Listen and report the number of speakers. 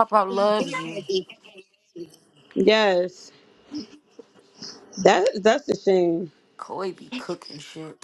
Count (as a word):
two